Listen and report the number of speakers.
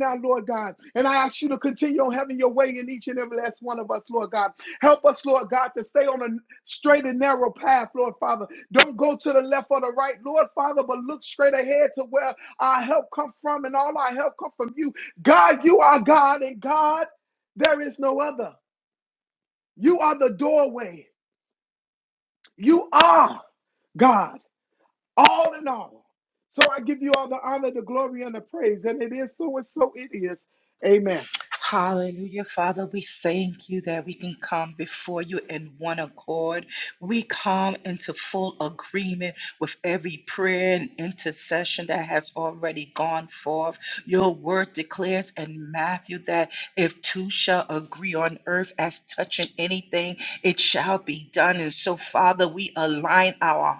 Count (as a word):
two